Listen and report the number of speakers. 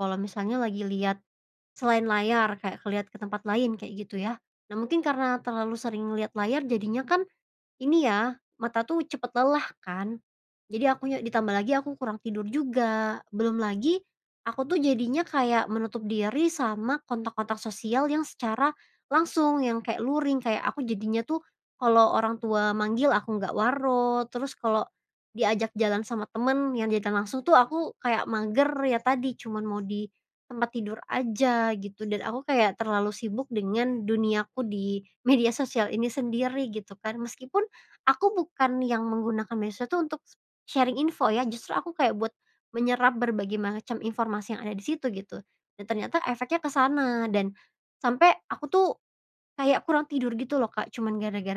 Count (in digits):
1